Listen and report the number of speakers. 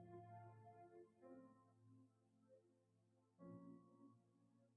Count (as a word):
zero